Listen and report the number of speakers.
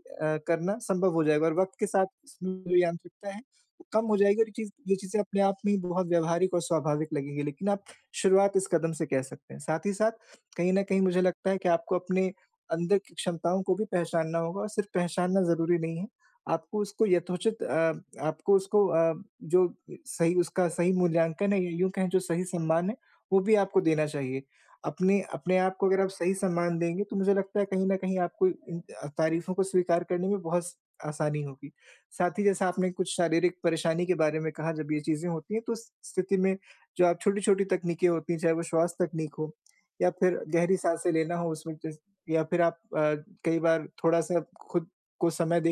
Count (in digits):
1